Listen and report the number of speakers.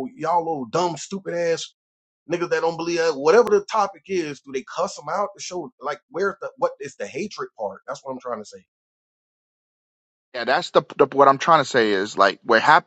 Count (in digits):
2